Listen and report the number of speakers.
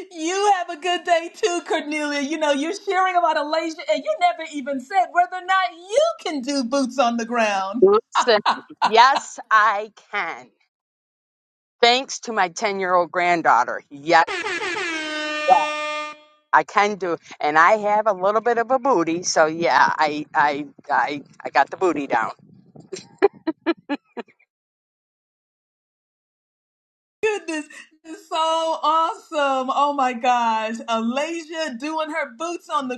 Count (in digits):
2